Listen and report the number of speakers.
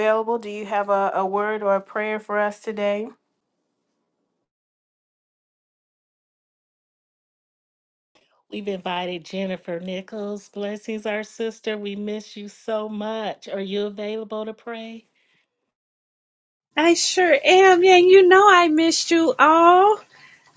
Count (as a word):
three